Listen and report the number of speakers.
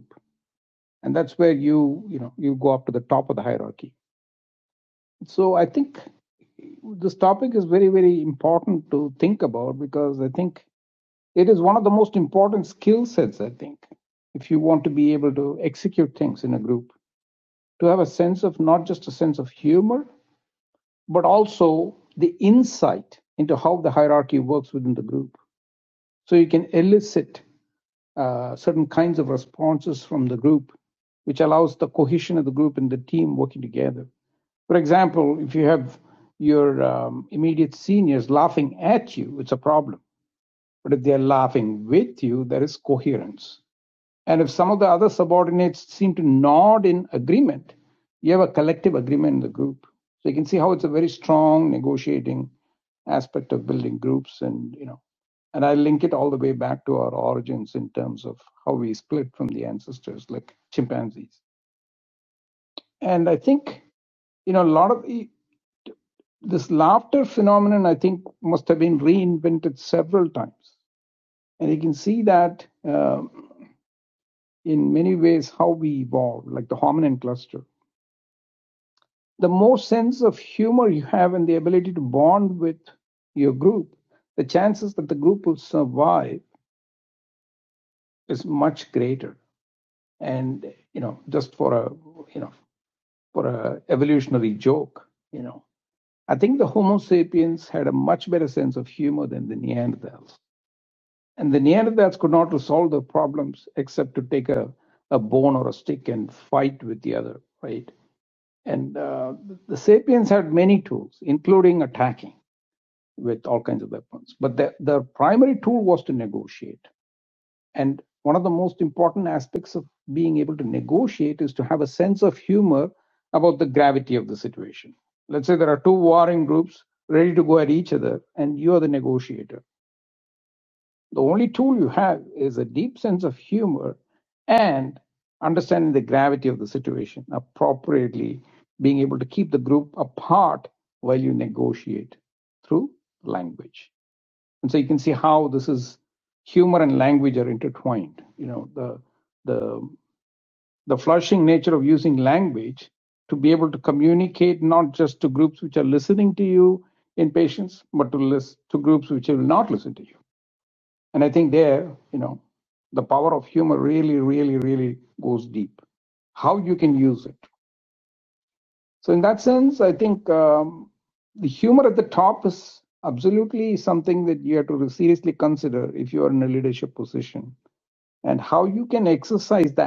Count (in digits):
1